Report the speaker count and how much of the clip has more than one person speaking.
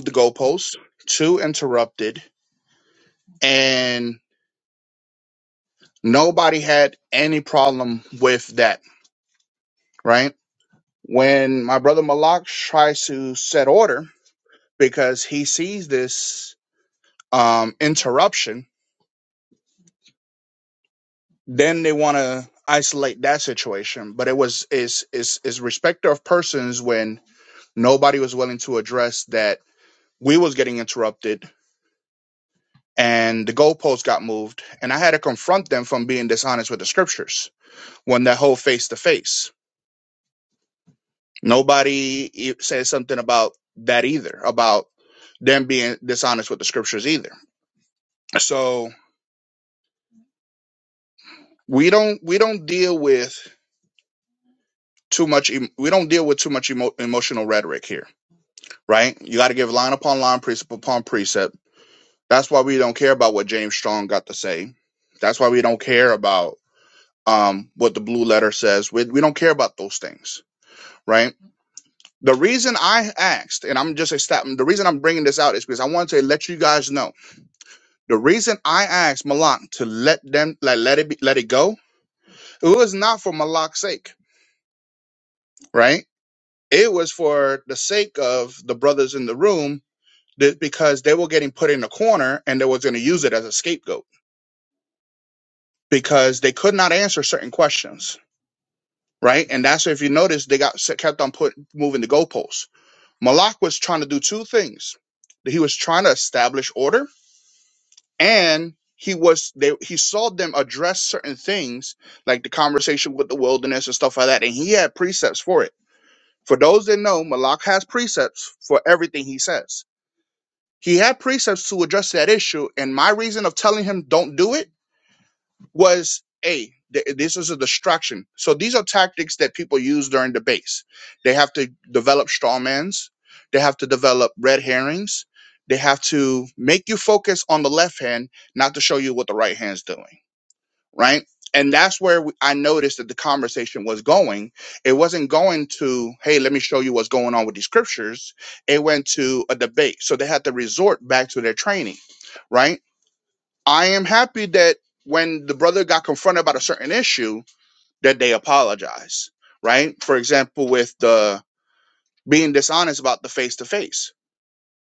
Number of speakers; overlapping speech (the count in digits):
1, no overlap